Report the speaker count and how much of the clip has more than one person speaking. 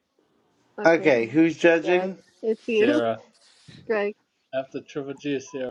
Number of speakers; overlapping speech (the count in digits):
3, about 14%